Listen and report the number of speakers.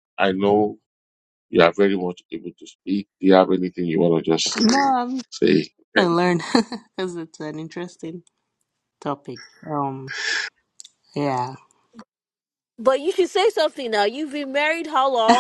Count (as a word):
three